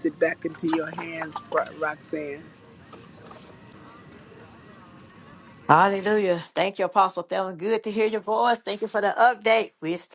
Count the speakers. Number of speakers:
two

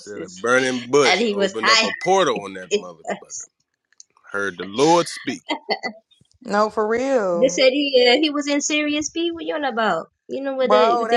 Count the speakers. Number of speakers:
three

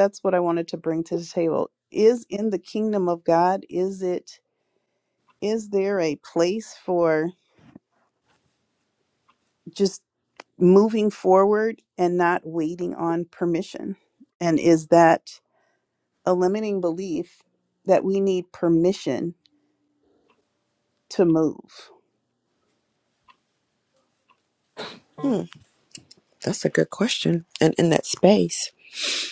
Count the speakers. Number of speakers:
two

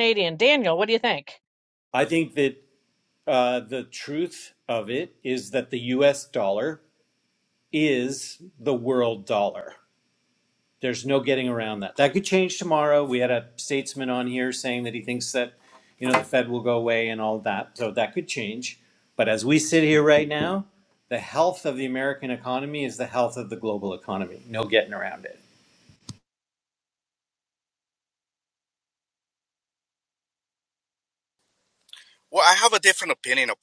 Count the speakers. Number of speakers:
three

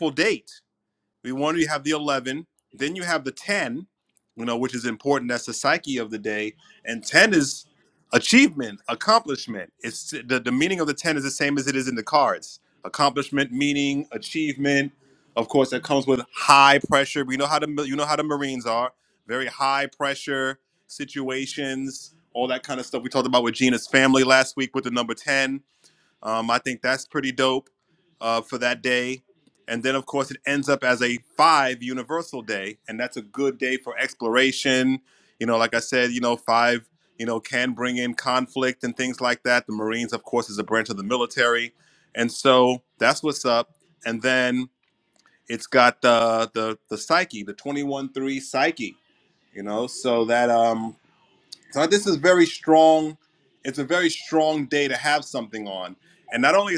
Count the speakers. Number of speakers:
one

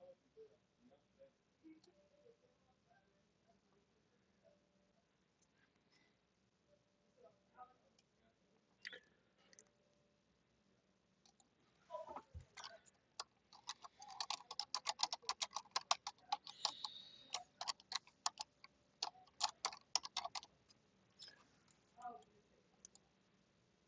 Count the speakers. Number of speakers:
zero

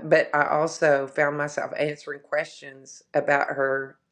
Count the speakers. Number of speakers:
one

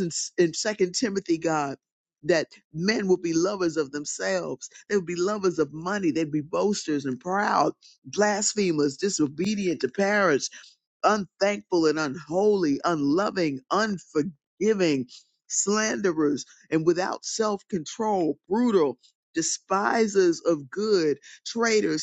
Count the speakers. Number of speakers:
one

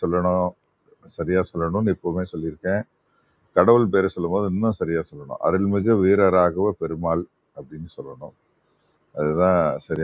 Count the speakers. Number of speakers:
one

